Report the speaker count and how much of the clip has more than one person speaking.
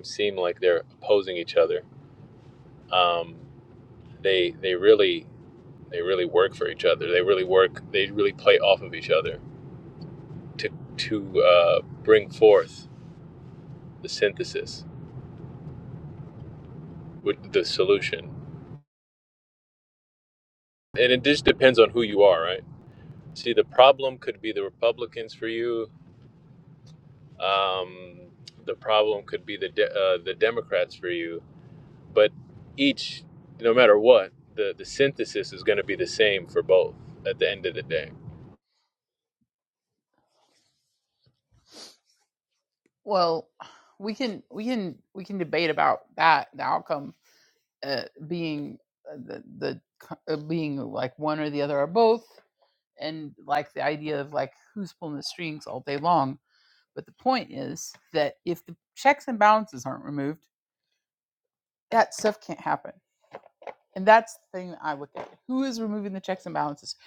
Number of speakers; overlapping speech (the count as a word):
two, no overlap